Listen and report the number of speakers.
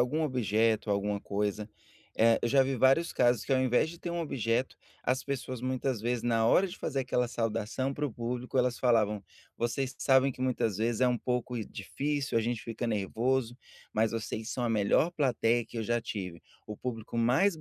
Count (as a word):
one